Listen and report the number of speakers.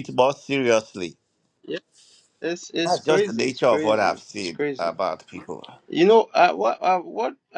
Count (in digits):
2